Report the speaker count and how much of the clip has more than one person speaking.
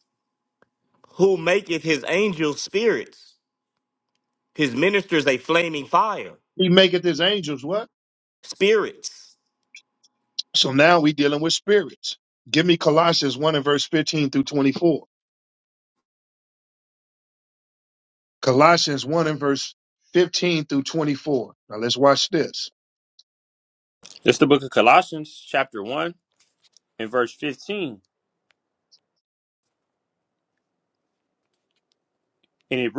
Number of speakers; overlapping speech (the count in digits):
3, no overlap